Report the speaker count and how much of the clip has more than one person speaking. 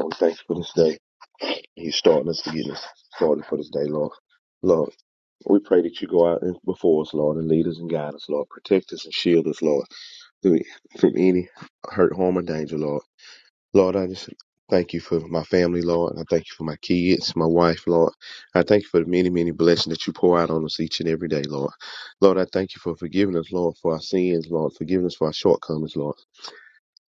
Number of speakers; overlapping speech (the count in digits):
1, no overlap